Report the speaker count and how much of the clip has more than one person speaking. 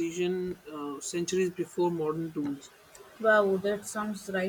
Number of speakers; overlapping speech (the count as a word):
two, no overlap